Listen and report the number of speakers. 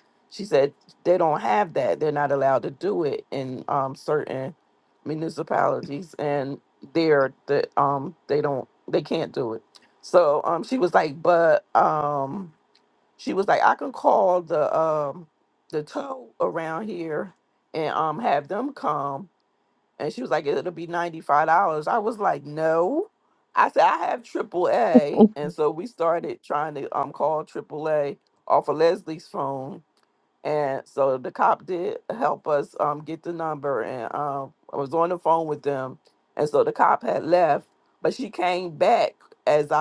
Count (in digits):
1